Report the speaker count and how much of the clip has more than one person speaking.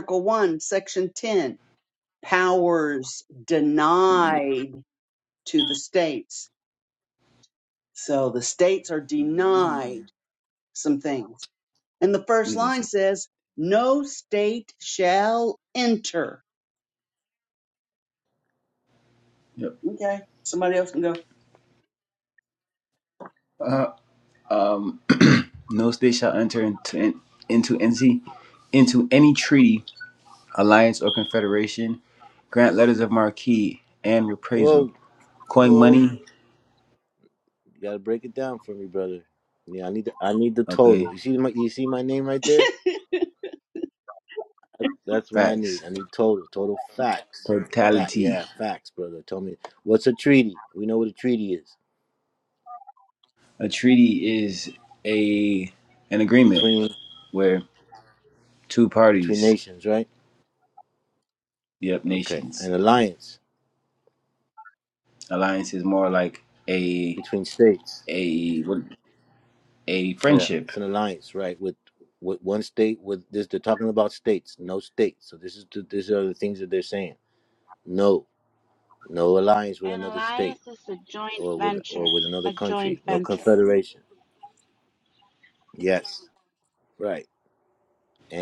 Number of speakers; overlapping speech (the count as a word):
four, about 8%